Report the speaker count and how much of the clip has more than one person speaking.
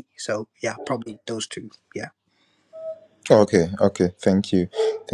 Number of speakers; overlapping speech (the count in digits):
2, no overlap